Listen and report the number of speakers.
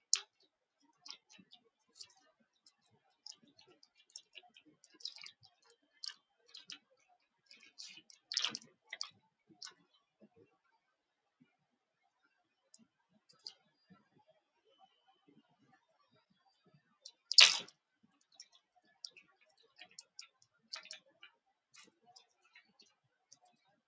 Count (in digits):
0